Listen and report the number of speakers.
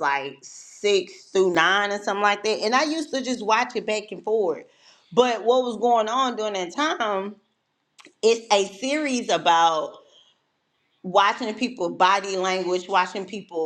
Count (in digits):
1